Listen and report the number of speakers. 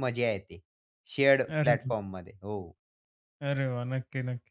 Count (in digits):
2